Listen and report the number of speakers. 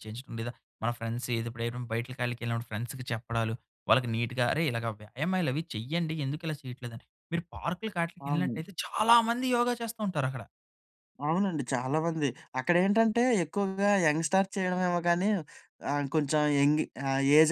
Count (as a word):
two